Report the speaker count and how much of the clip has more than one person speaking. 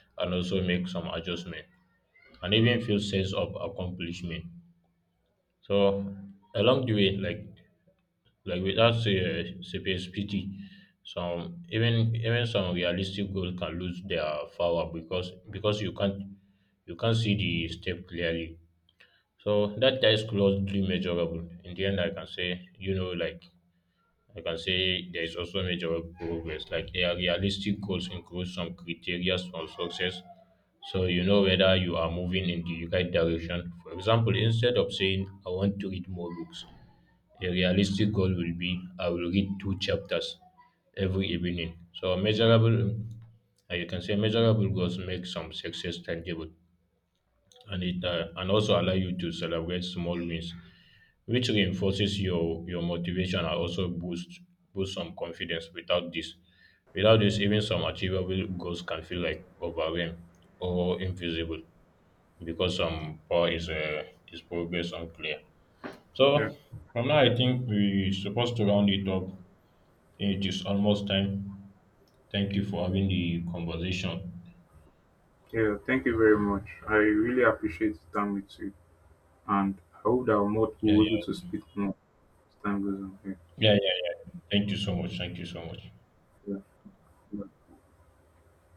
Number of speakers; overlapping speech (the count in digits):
2, under 1%